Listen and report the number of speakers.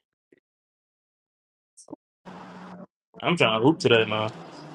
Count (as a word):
one